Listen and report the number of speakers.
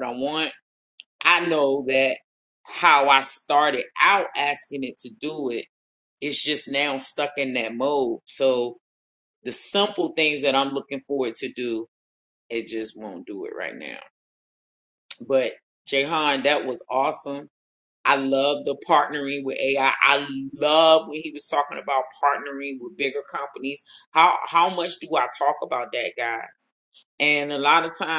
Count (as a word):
one